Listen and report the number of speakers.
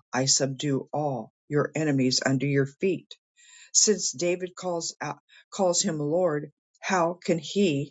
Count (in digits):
1